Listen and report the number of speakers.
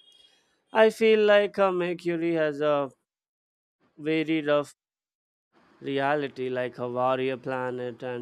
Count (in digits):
1